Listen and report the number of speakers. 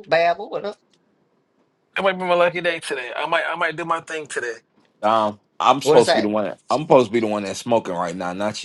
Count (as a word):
three